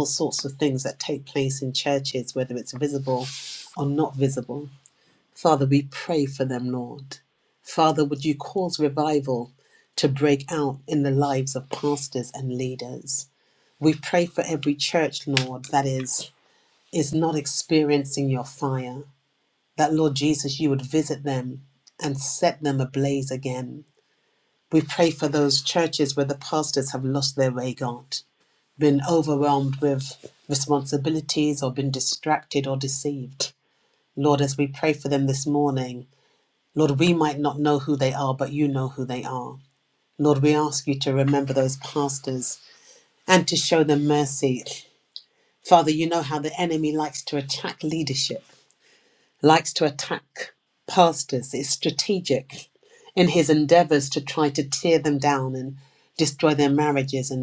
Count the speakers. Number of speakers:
one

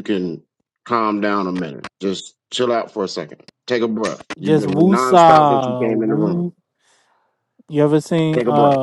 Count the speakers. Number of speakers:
two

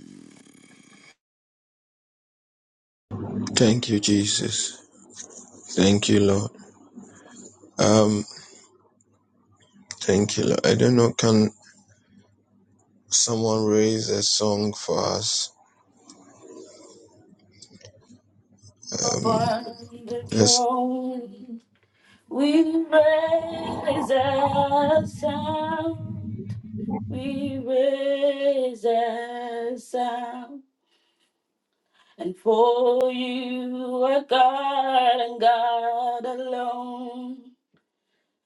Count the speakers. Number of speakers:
two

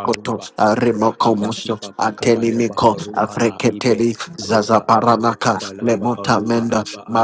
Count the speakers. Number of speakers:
two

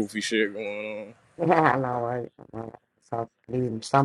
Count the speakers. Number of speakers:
two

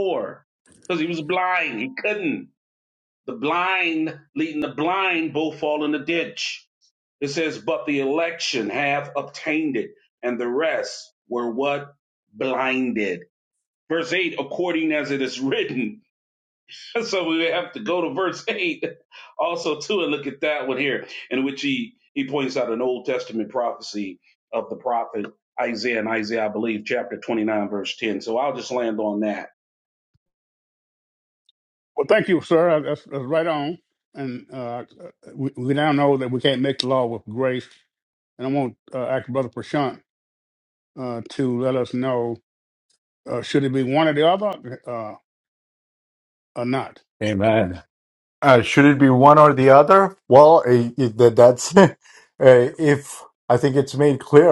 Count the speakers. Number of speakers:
three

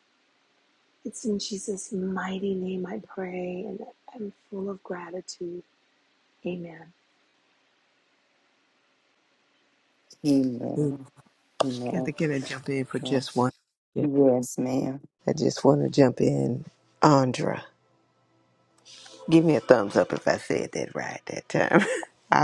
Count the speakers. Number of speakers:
three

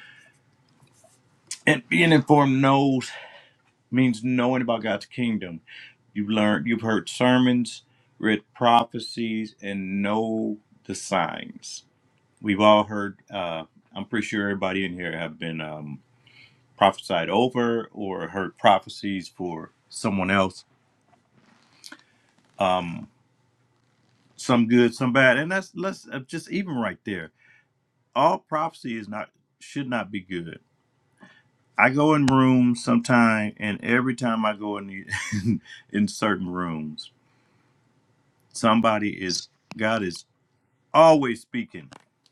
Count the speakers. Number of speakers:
one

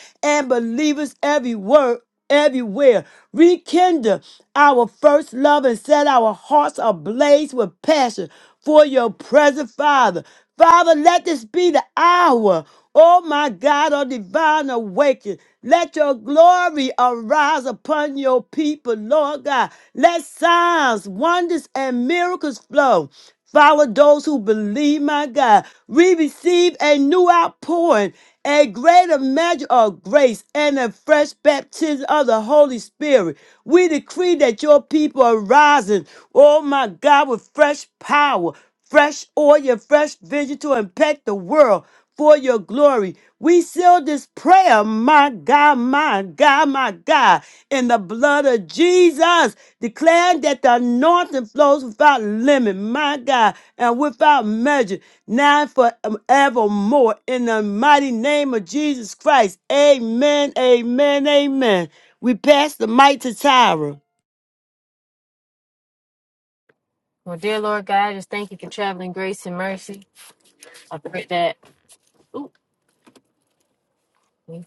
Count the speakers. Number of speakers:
two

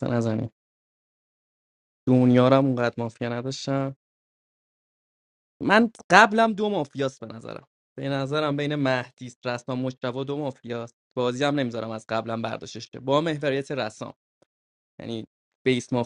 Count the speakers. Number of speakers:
one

